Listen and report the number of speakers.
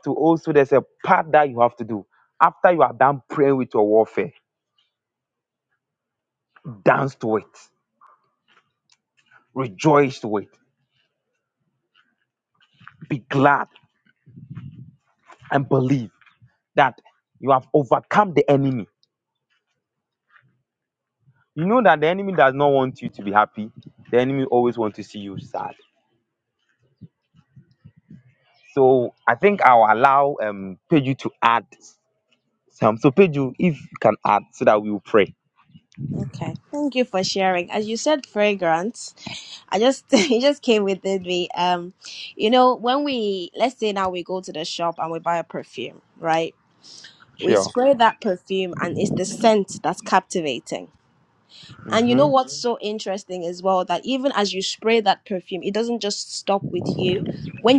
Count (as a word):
two